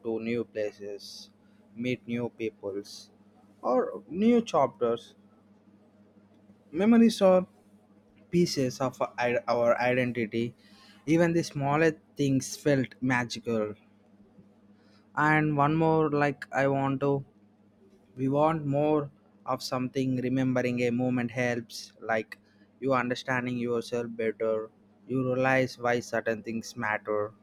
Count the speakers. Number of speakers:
one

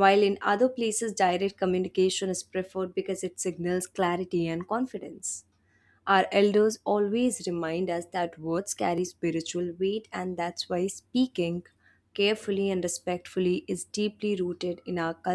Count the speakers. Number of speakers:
one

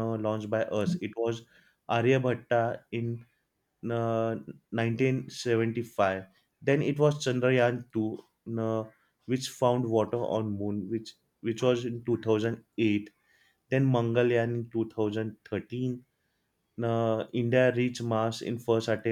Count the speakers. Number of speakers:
one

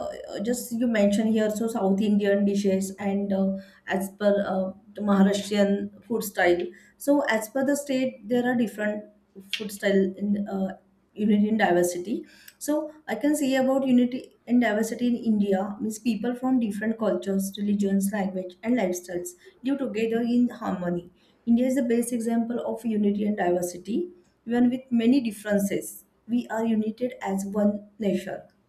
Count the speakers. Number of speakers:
one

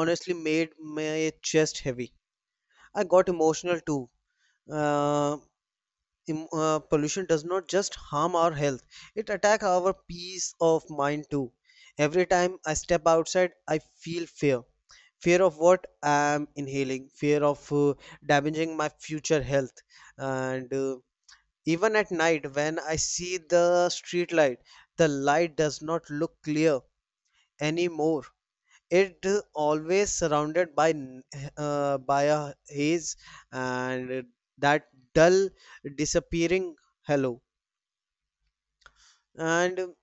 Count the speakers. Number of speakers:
one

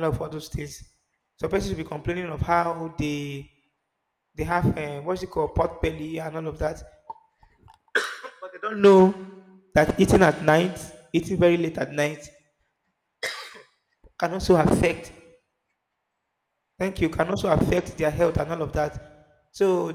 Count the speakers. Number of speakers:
one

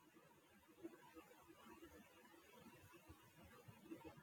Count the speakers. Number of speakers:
zero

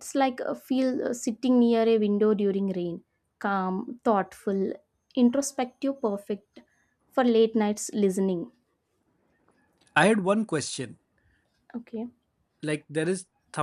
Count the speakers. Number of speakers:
two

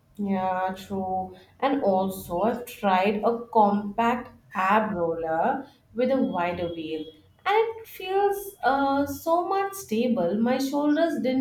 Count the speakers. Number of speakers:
one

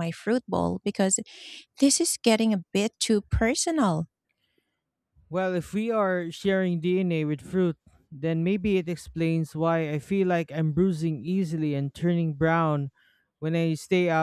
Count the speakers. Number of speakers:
two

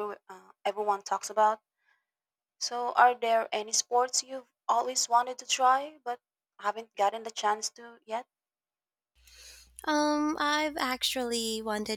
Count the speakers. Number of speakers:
two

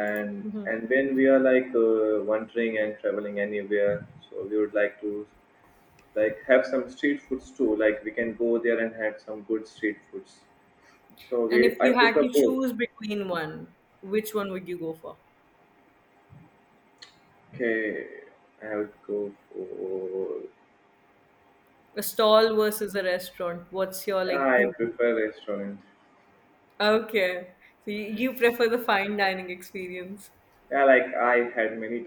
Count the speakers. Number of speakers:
two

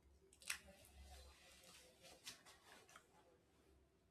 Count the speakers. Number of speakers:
zero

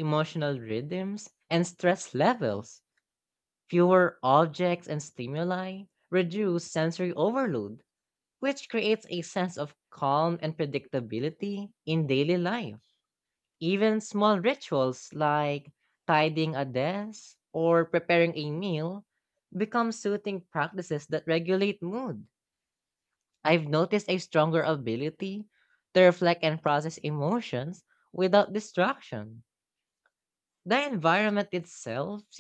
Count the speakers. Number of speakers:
one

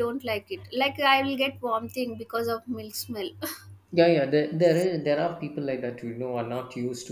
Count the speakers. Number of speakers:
two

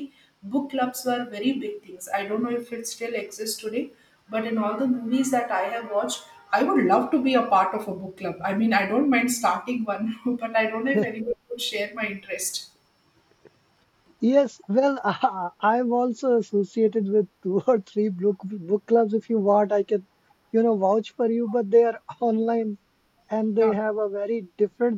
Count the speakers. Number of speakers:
two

